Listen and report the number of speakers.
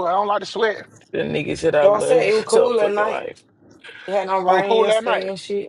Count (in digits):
3